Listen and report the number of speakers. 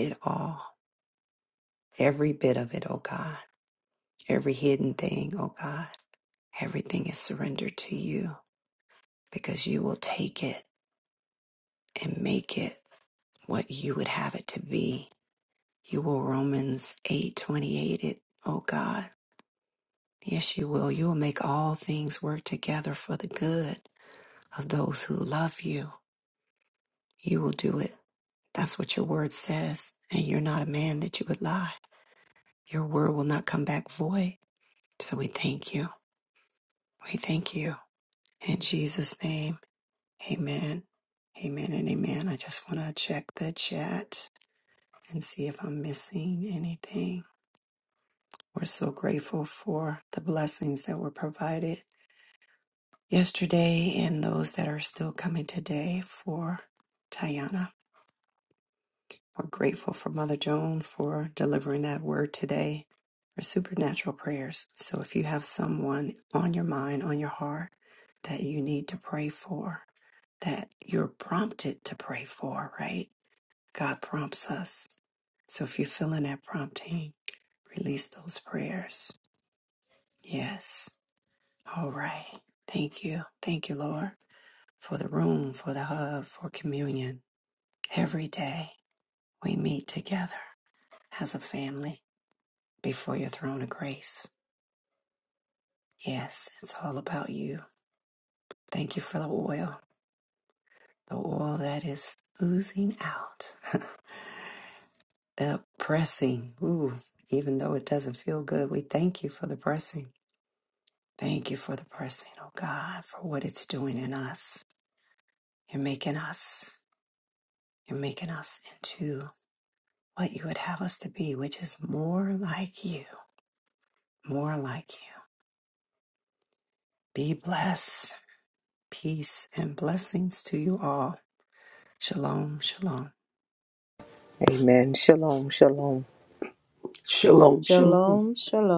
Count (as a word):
four